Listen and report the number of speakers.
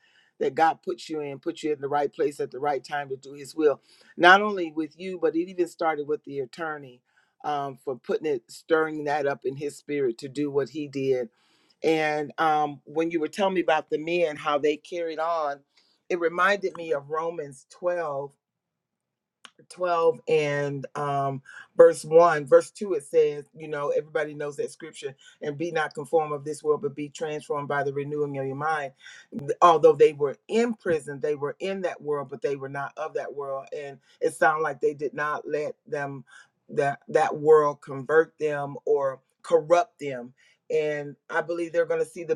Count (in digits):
1